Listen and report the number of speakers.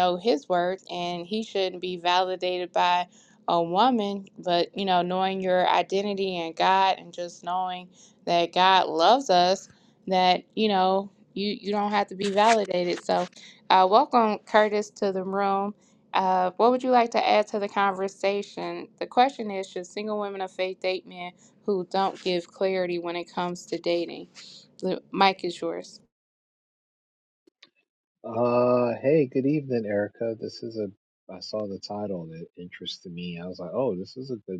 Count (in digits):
2